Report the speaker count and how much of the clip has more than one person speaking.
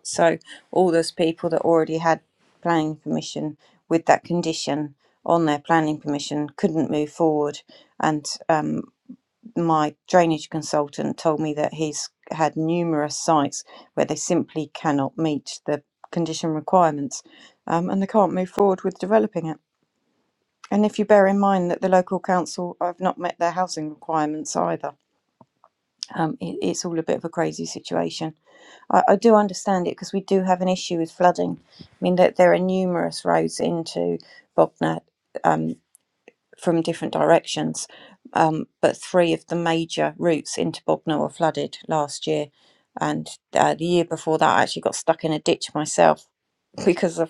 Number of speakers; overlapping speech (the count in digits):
1, no overlap